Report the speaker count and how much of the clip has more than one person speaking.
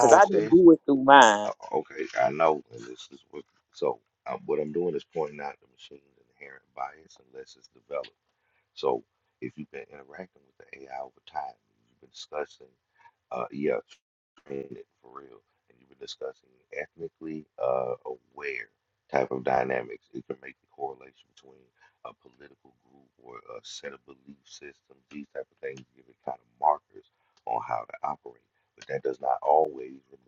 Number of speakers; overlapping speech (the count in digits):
2, about 2%